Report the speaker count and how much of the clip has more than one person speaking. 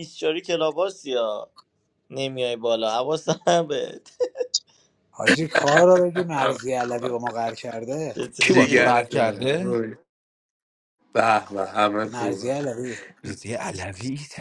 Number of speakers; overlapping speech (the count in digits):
4, about 12%